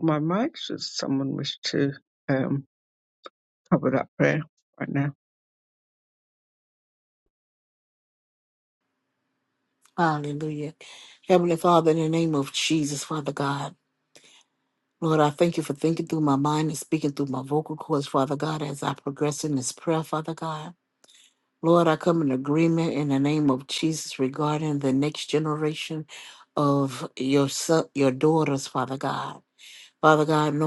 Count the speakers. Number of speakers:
2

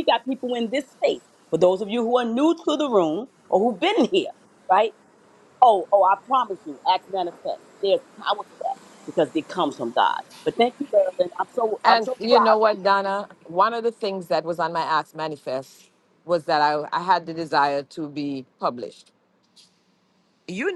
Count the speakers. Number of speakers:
2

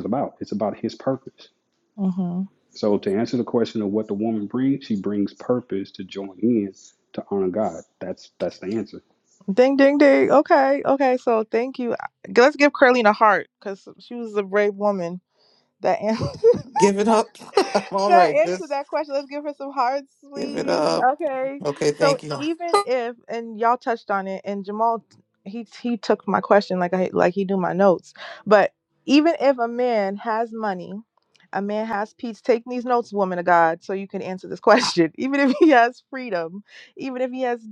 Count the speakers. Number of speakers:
3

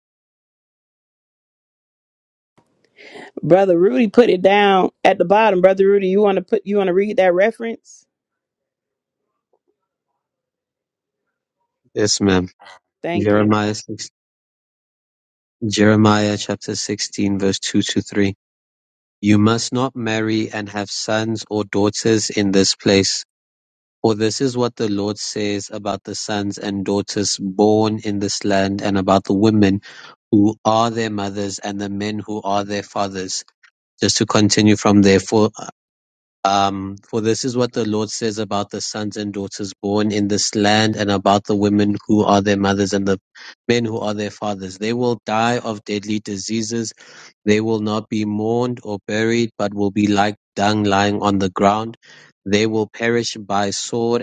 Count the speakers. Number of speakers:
2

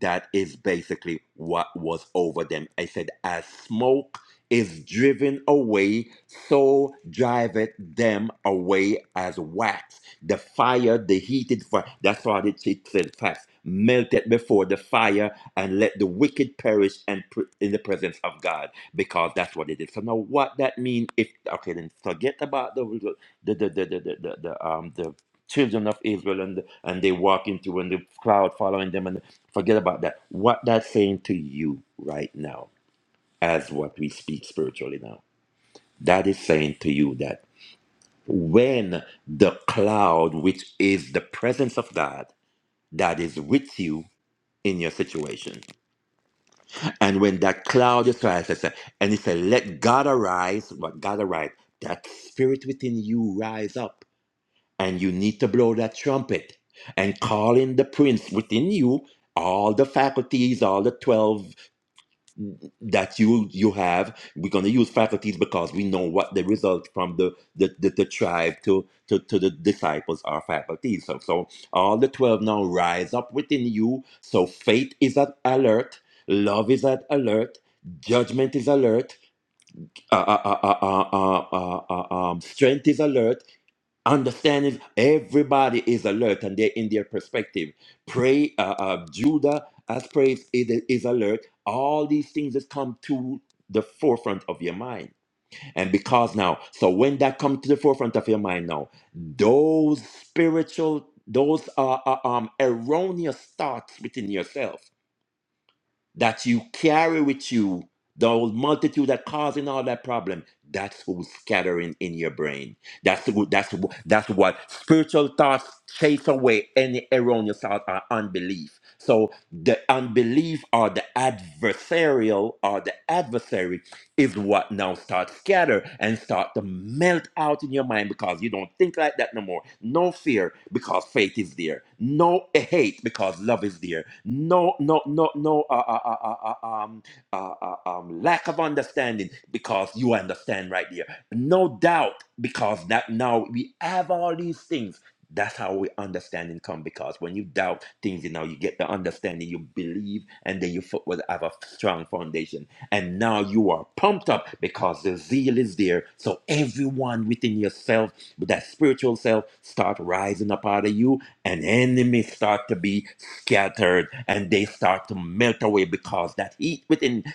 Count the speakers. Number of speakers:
1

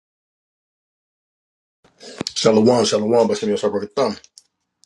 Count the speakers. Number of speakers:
1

